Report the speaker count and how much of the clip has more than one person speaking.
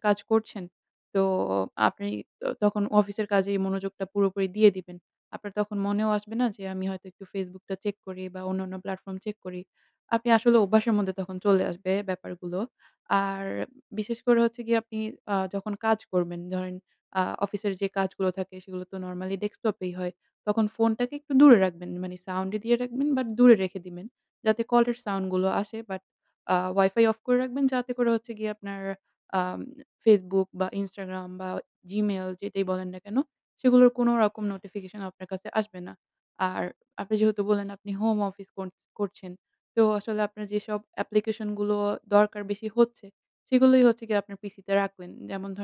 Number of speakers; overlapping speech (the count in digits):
1, no overlap